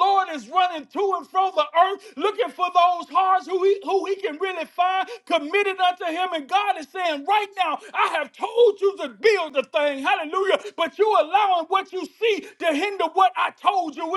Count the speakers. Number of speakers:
one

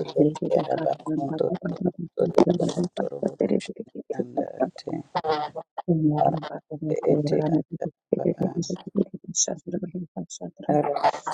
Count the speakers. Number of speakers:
two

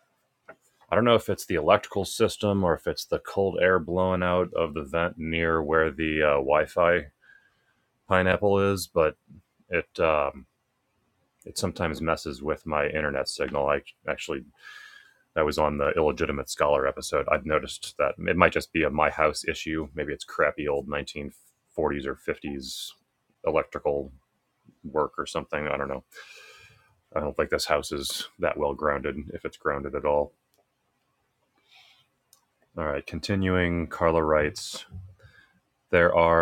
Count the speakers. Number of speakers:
one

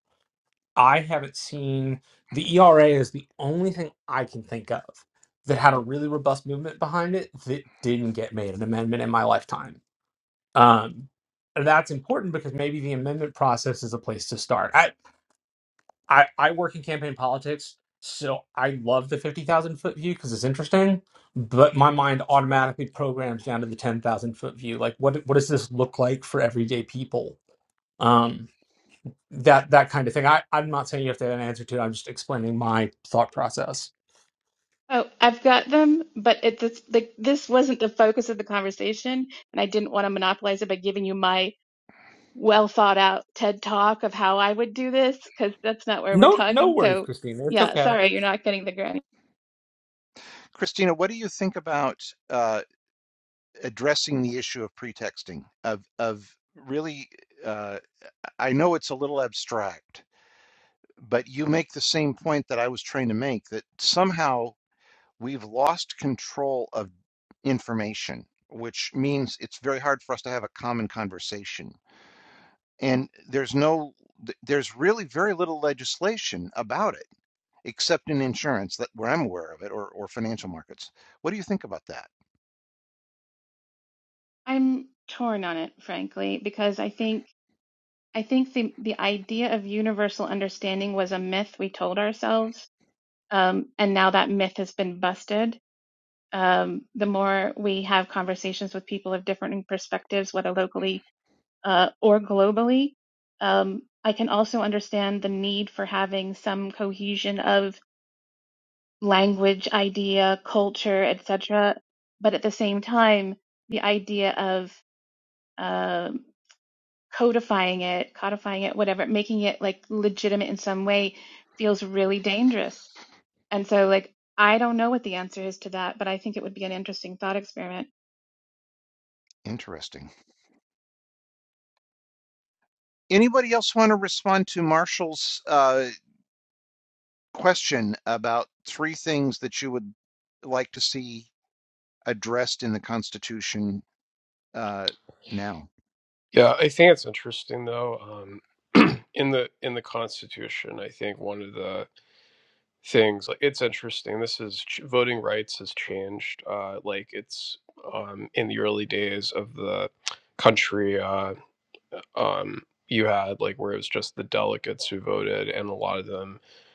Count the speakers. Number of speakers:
four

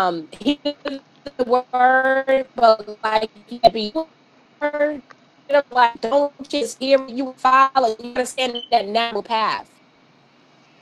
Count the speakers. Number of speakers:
one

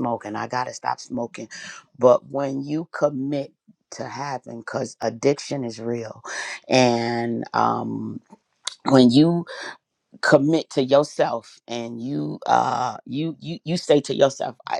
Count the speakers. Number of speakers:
one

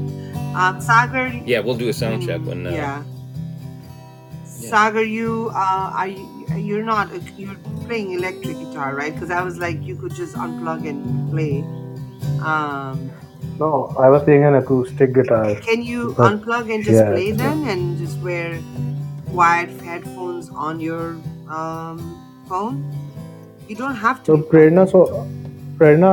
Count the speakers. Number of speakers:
three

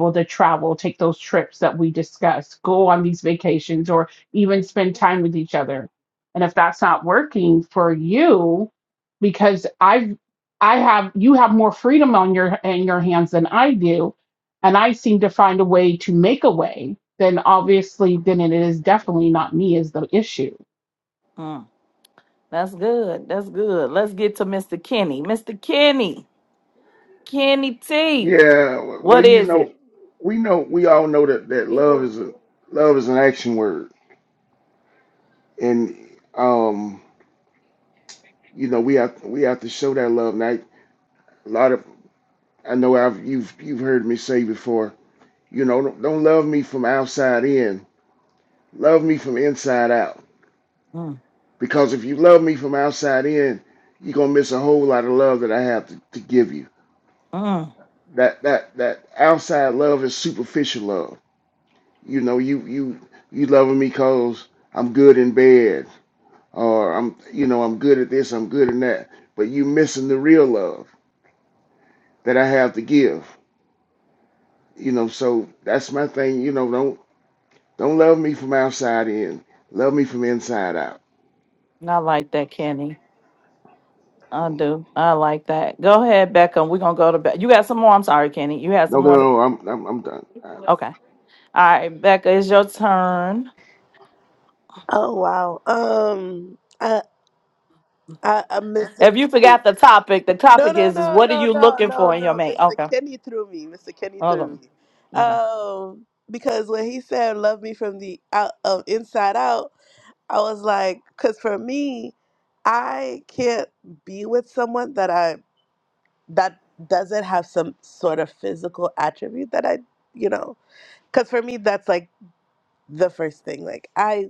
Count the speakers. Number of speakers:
four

